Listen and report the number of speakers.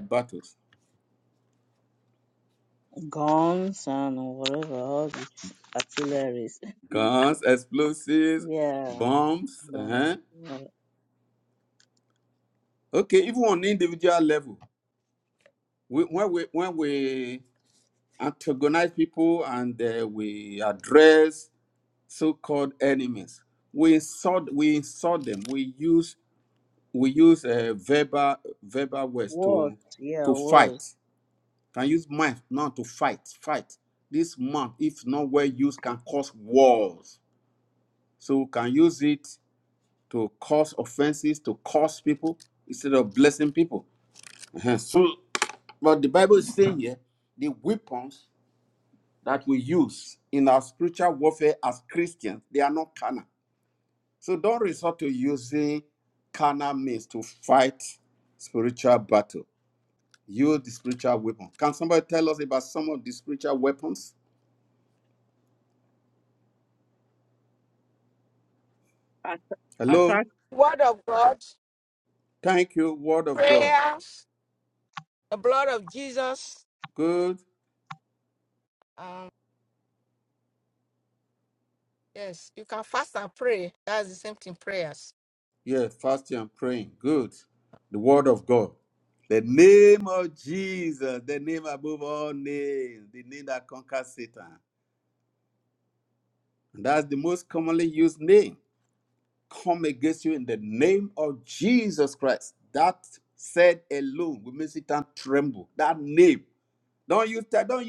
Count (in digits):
3